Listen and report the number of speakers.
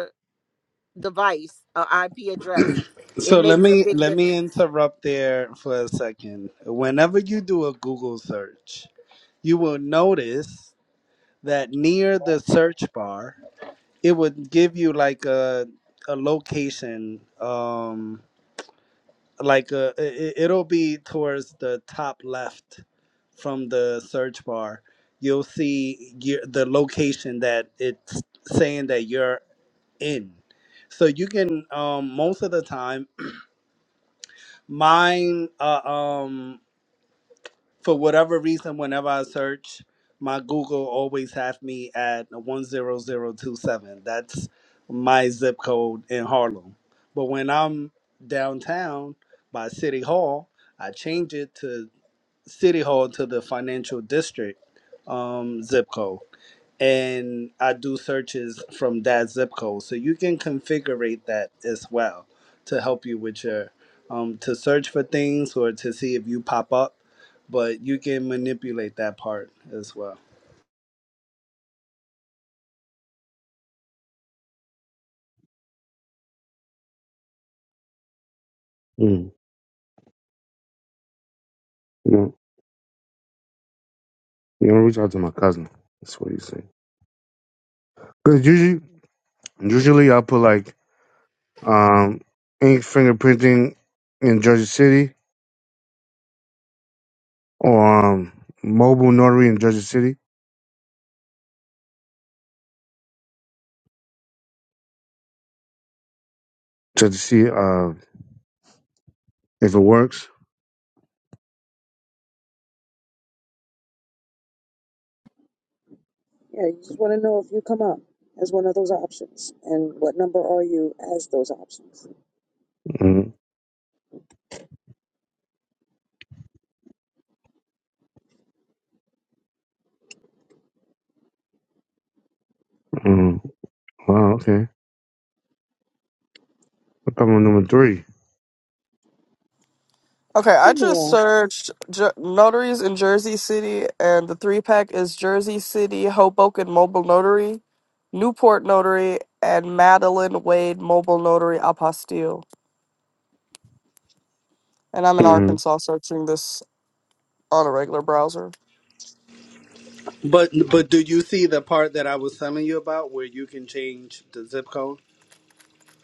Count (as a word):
five